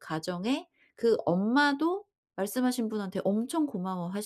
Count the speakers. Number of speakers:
1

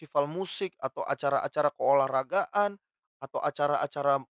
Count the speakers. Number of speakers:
1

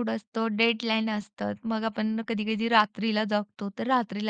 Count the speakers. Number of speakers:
1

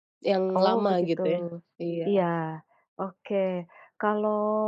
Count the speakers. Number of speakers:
2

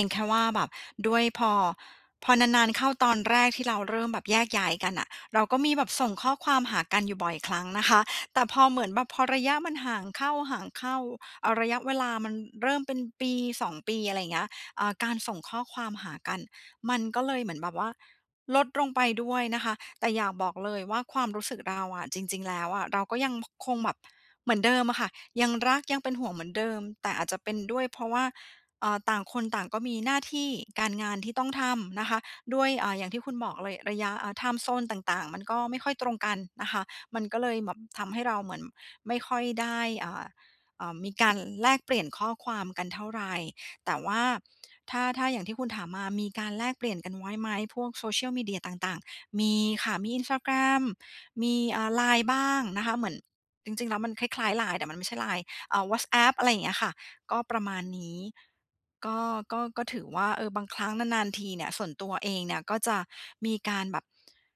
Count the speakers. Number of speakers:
1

